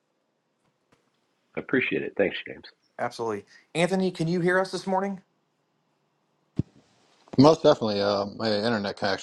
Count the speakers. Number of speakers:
3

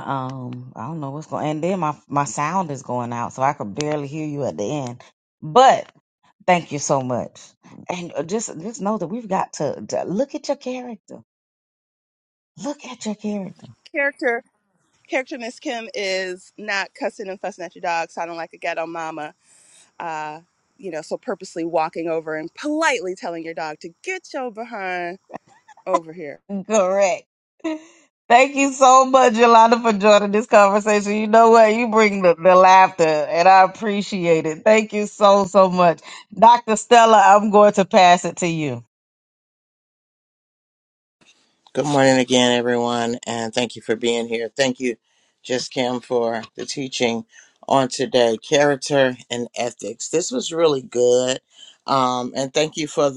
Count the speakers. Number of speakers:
3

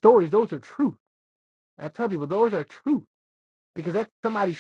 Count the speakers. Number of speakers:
1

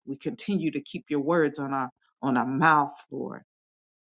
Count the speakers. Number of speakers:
1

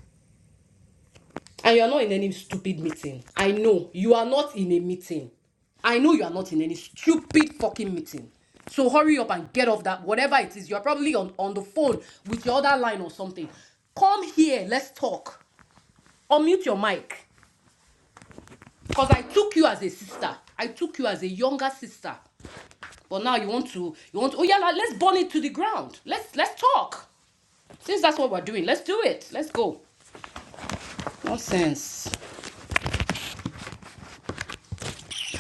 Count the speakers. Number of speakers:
1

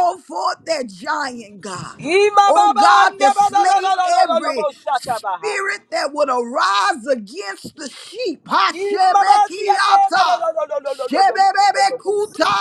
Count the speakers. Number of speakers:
2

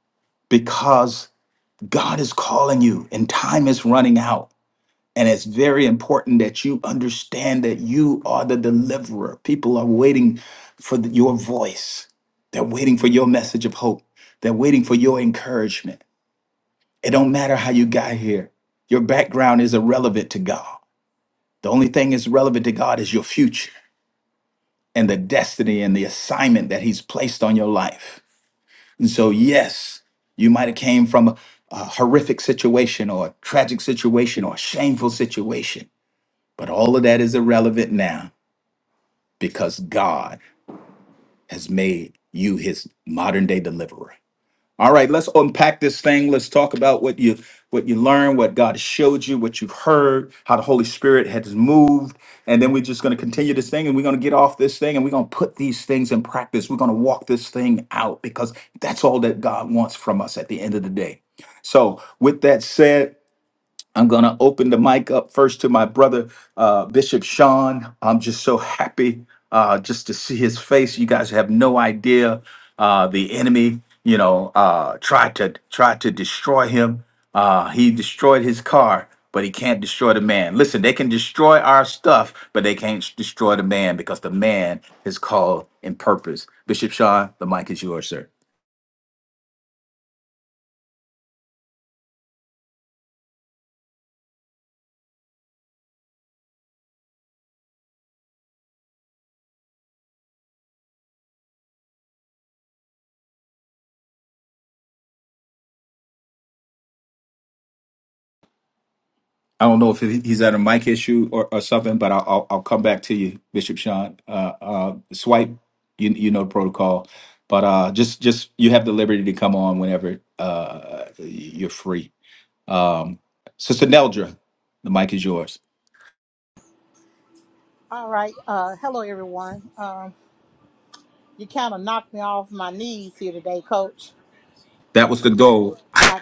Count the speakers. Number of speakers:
2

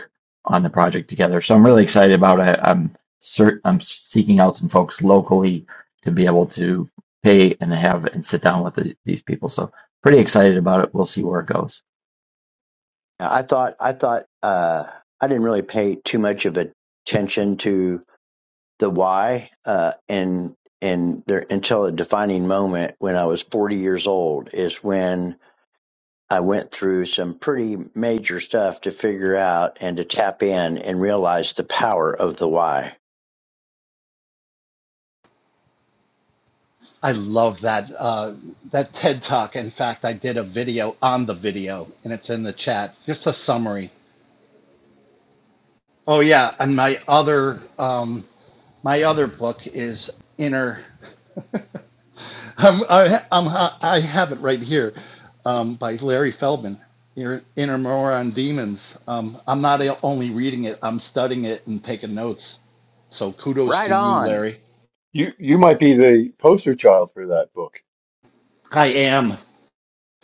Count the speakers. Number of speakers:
4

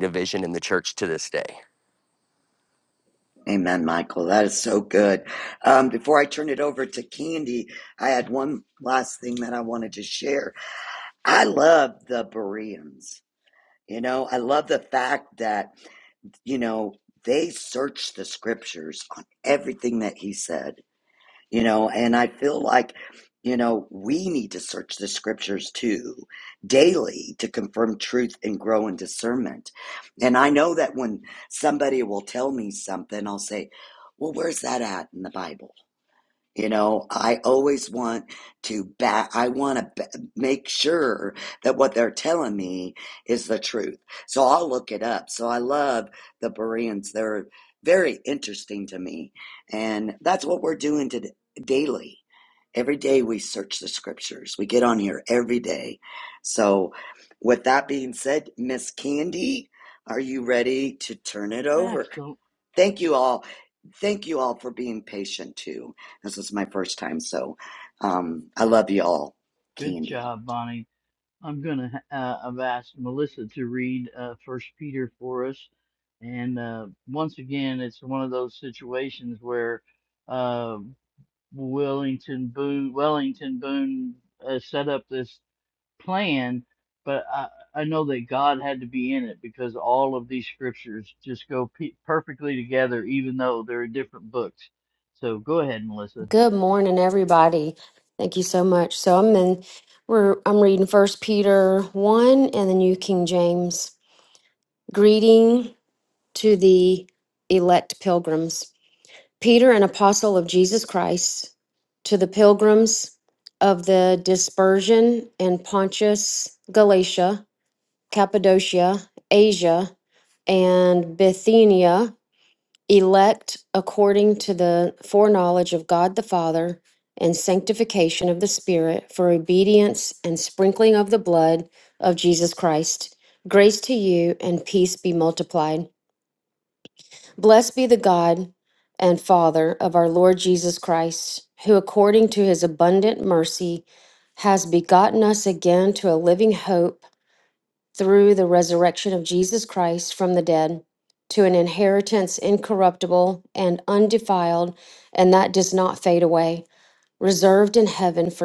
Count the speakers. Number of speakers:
4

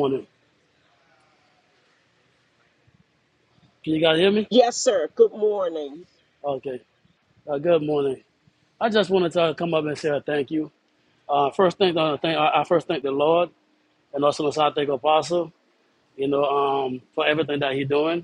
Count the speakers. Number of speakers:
2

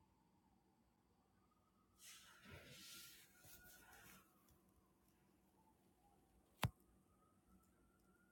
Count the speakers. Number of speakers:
0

